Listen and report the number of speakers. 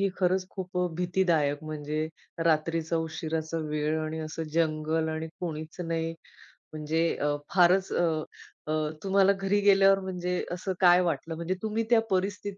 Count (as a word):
one